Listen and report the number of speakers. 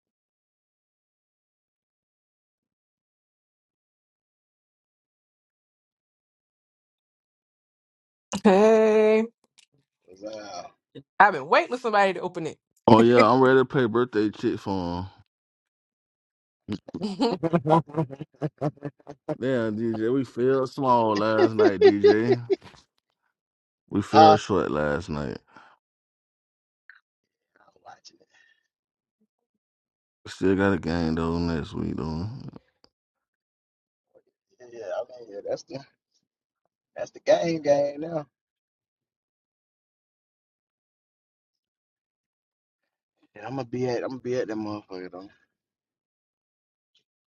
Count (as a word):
three